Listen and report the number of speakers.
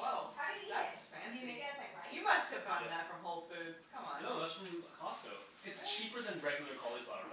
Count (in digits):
3